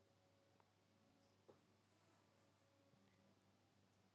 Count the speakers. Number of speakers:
0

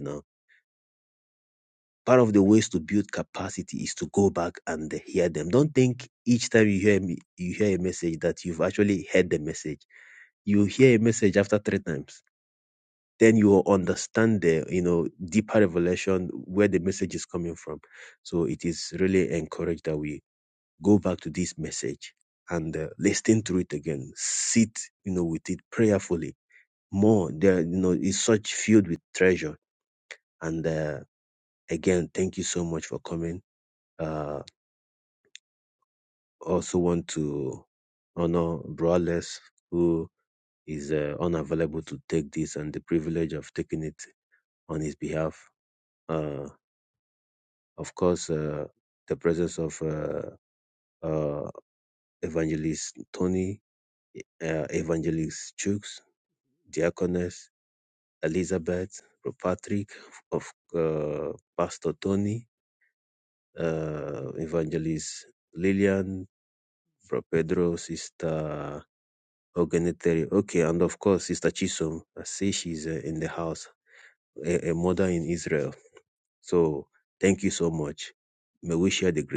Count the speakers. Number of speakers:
1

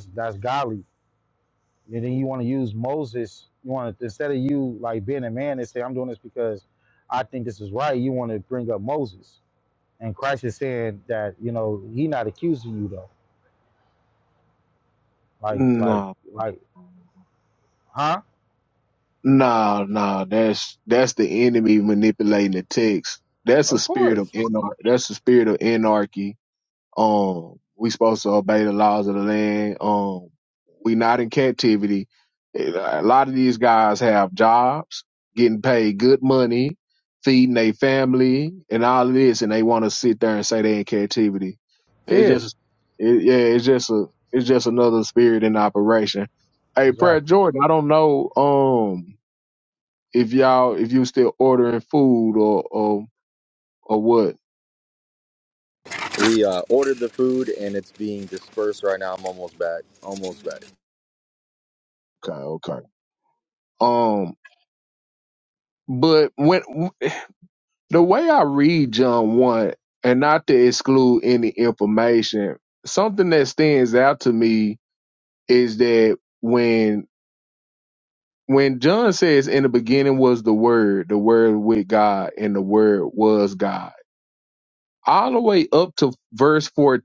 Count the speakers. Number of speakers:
3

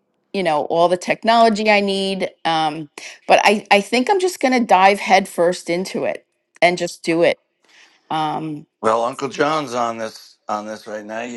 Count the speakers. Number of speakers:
2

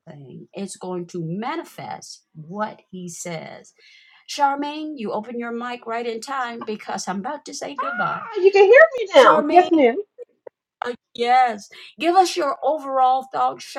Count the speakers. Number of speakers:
2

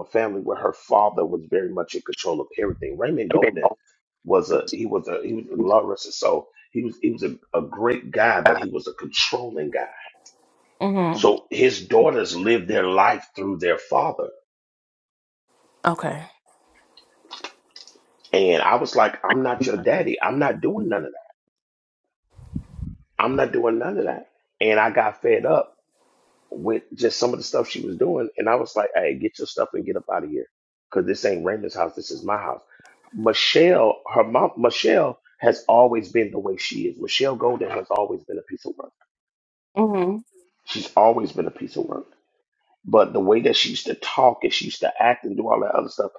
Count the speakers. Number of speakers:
2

